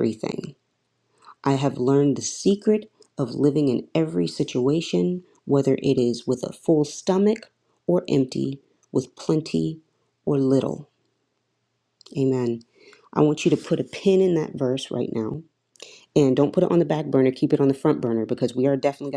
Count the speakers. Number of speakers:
one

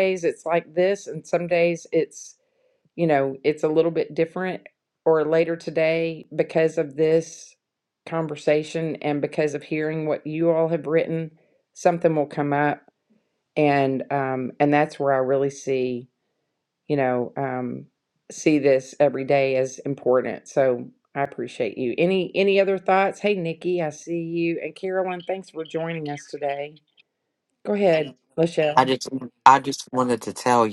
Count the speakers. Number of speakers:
two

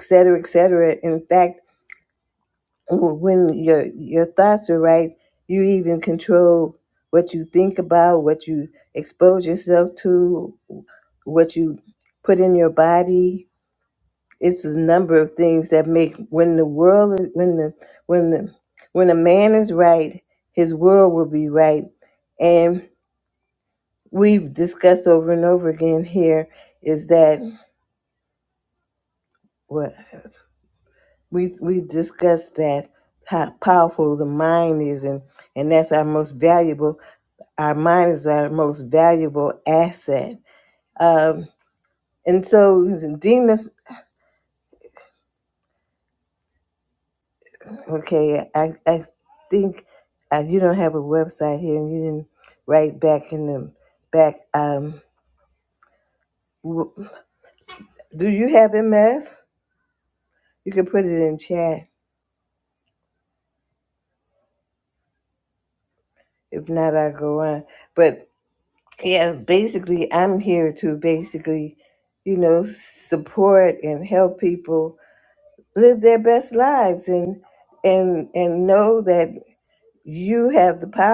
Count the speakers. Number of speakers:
one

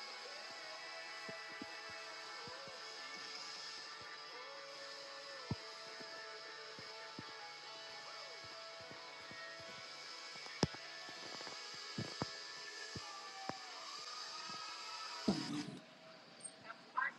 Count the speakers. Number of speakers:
zero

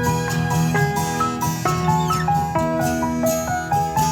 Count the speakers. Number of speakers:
zero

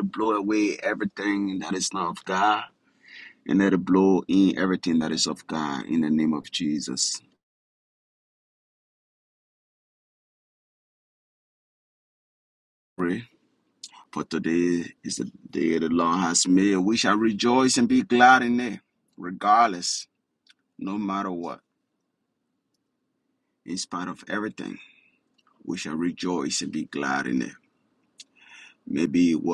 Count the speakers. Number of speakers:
one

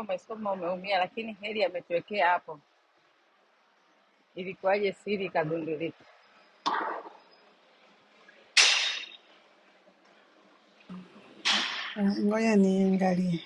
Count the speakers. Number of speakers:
two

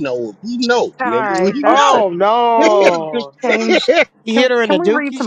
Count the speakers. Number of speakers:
three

